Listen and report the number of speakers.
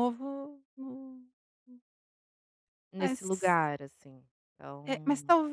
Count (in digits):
2